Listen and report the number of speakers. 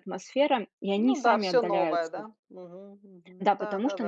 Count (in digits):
2